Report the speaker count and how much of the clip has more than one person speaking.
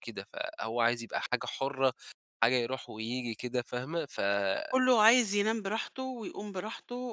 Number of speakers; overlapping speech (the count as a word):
two, about 1%